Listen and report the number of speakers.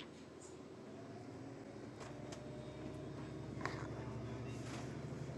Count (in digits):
0